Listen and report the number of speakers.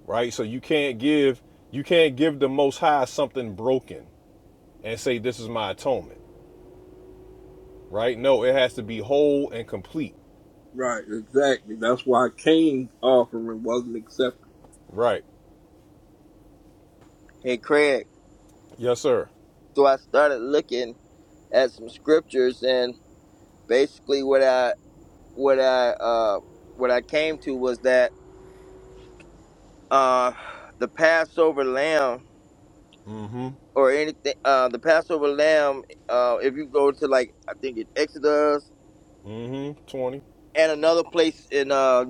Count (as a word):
three